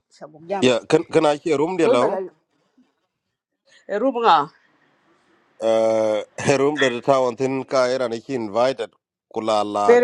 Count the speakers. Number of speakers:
2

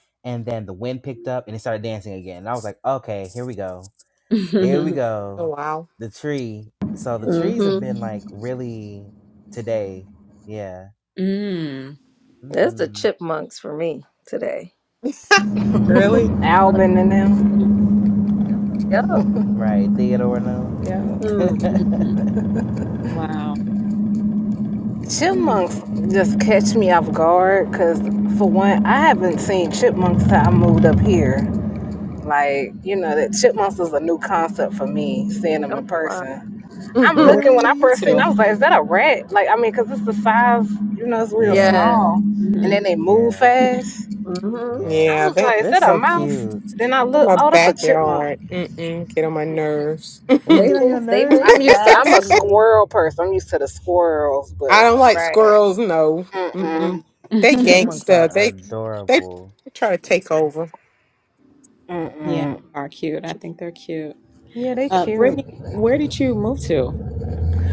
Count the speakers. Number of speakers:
5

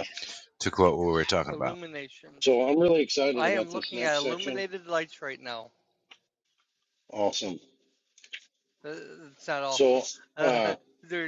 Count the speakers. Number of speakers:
3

